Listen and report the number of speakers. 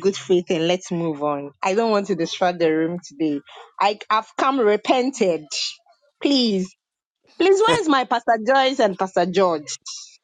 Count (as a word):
one